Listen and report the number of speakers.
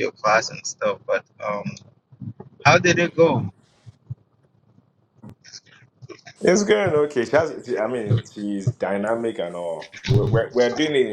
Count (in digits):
2